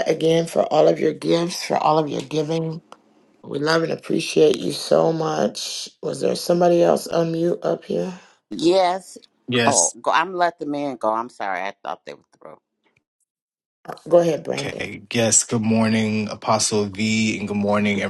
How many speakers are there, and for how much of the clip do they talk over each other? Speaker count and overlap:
3, about 3%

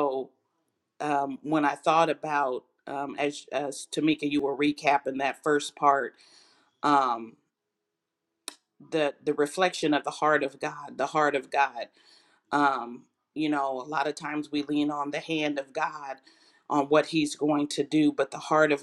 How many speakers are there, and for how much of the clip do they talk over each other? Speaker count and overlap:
1, no overlap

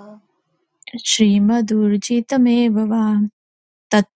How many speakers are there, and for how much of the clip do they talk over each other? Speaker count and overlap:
1, no overlap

